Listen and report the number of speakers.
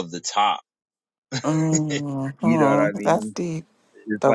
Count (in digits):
2